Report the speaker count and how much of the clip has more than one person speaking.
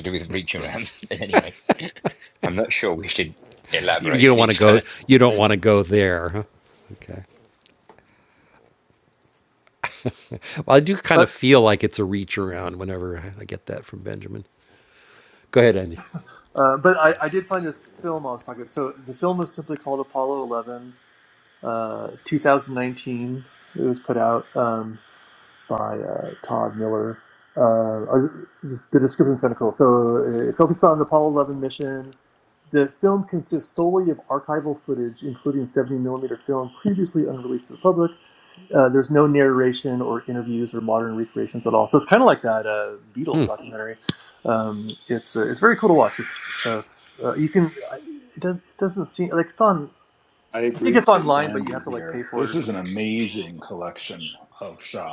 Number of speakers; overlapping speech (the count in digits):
4, about 5%